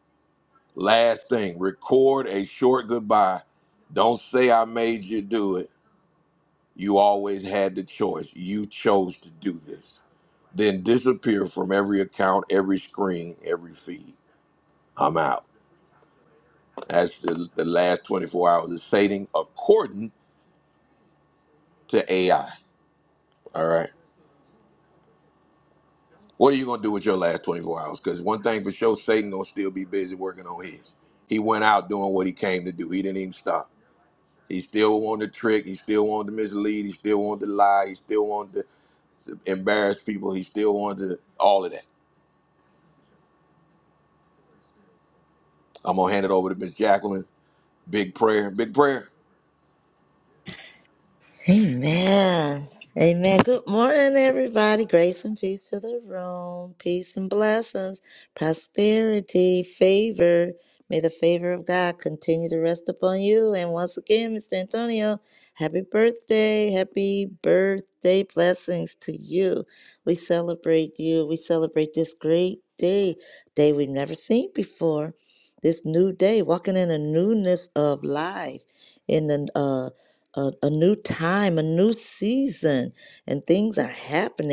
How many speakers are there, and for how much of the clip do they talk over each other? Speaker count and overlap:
two, no overlap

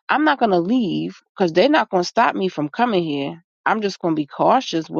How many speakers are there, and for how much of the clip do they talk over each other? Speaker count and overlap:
one, no overlap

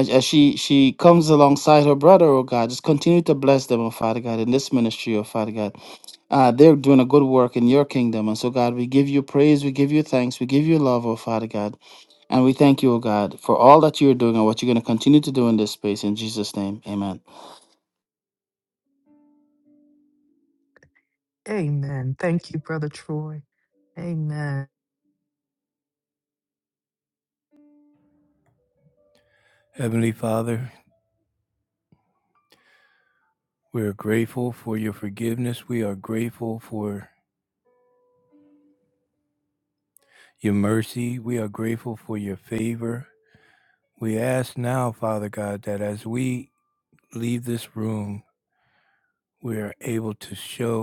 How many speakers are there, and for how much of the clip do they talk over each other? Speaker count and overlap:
three, no overlap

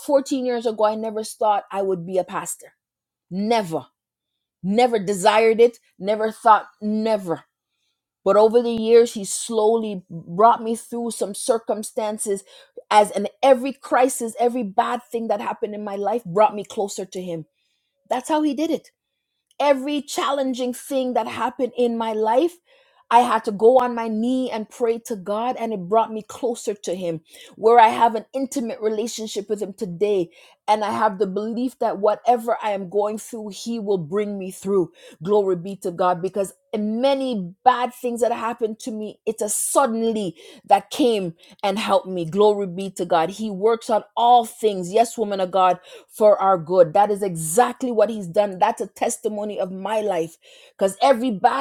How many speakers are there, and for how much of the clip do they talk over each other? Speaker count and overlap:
one, no overlap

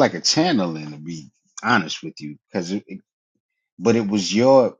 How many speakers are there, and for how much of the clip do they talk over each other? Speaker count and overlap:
one, no overlap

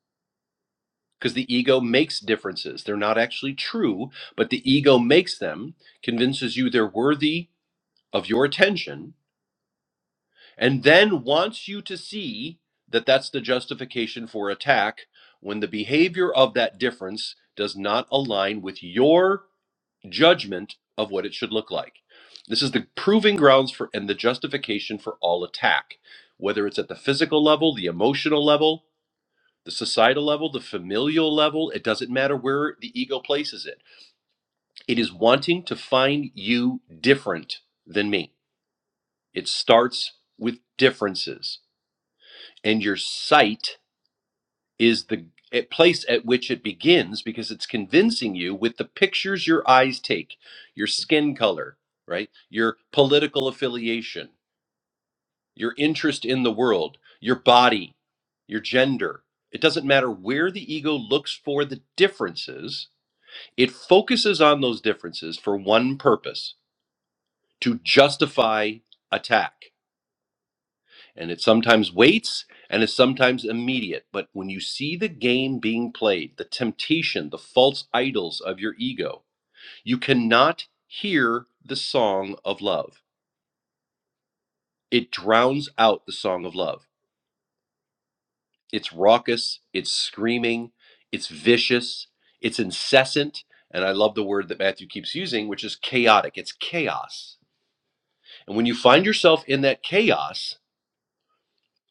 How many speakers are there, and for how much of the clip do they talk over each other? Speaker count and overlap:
one, no overlap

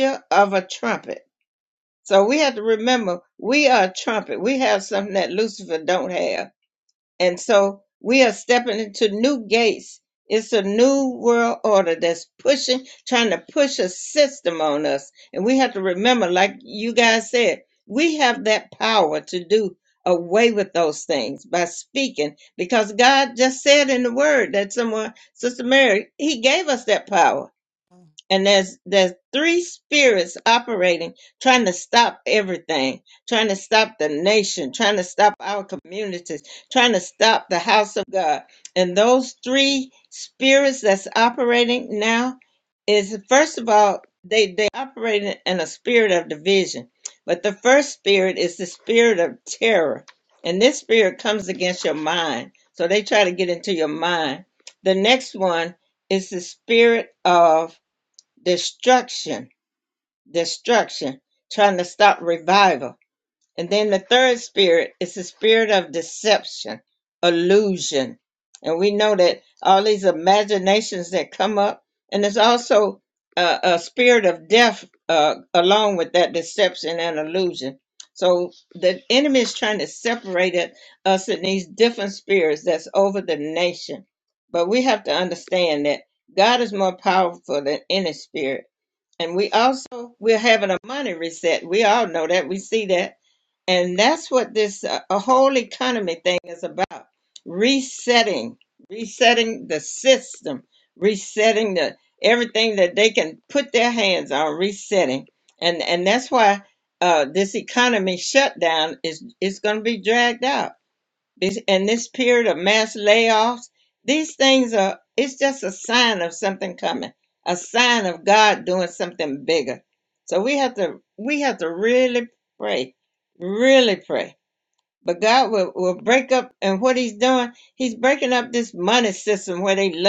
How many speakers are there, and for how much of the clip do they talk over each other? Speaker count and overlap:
one, no overlap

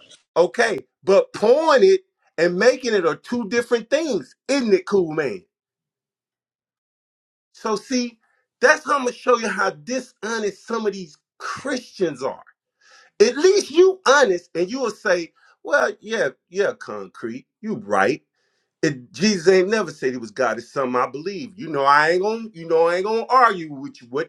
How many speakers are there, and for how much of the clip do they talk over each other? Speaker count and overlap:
one, no overlap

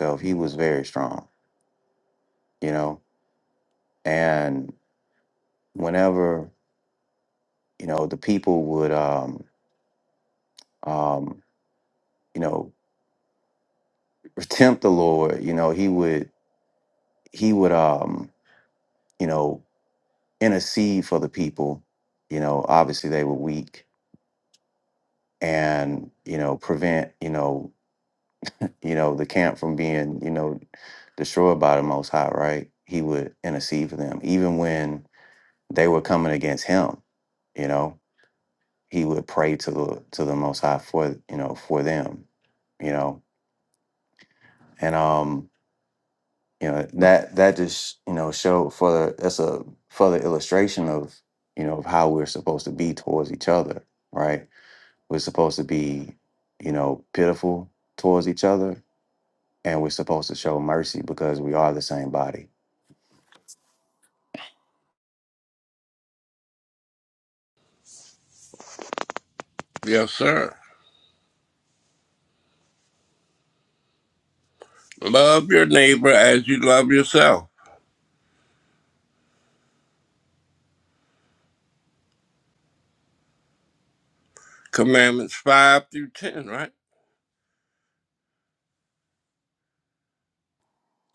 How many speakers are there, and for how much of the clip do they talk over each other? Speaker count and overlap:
two, no overlap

